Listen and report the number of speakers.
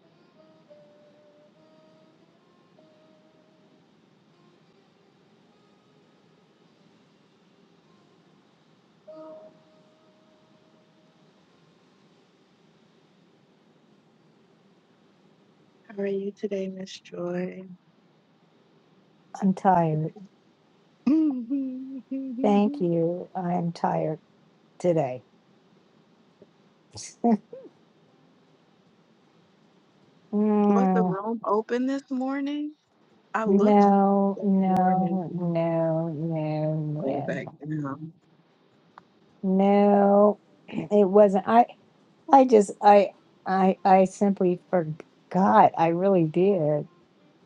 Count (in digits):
2